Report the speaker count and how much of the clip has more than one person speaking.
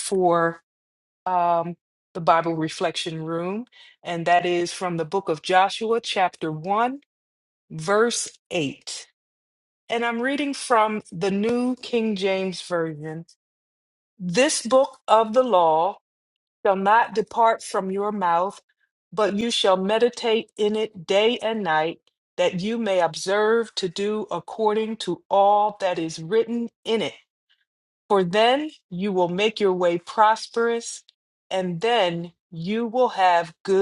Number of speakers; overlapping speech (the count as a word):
one, no overlap